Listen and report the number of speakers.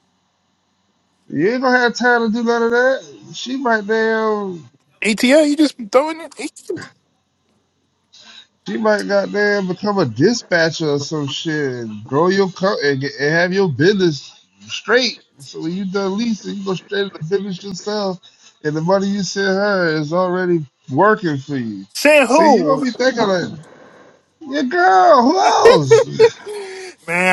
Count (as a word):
two